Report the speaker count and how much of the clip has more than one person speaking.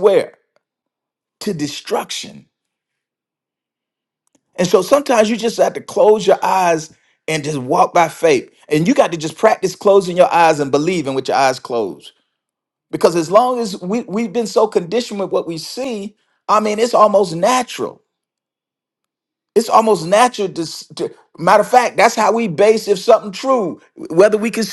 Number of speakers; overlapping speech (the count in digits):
1, no overlap